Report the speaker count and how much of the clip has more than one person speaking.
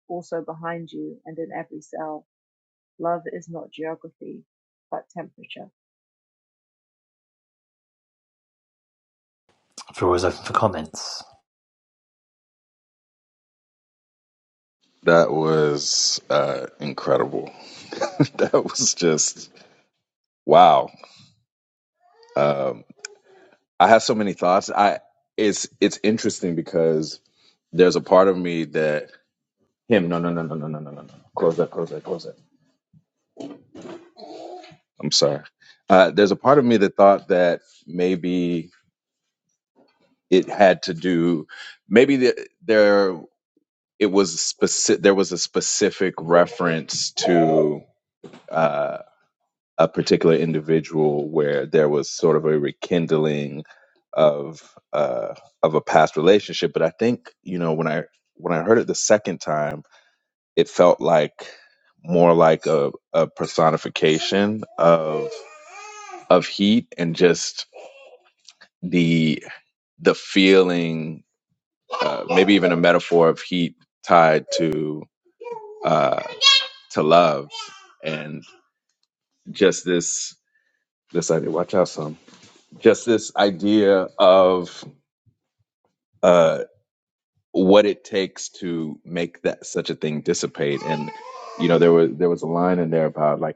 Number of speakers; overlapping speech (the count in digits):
3, no overlap